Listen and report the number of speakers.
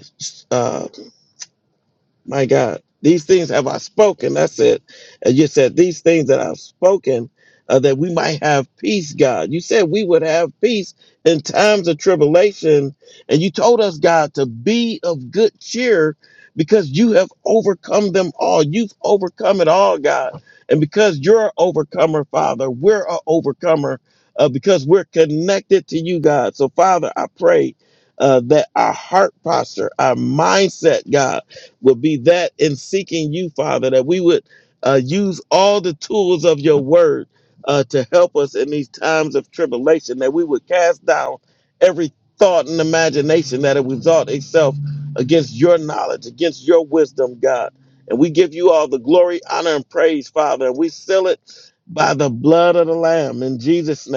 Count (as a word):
one